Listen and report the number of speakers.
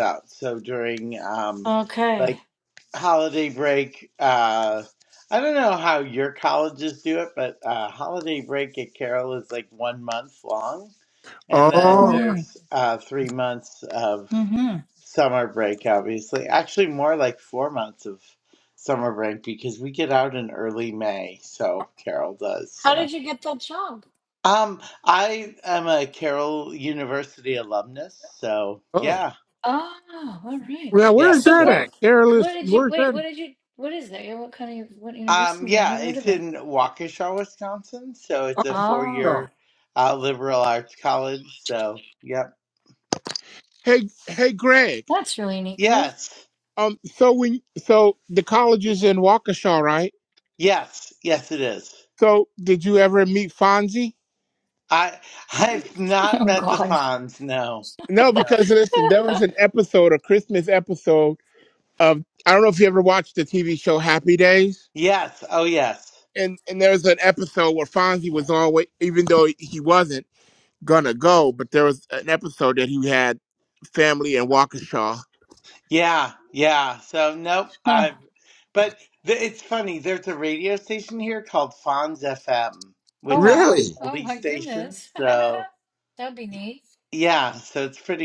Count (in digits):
3